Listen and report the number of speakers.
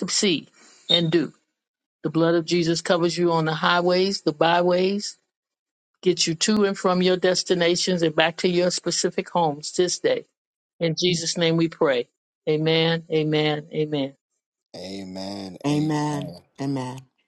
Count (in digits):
3